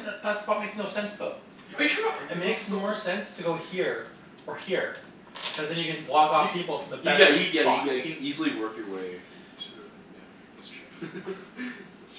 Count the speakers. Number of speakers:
two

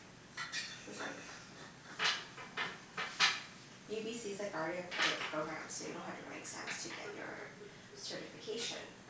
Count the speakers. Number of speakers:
one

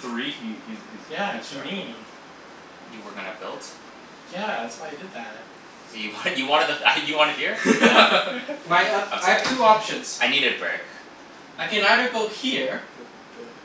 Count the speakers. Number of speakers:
four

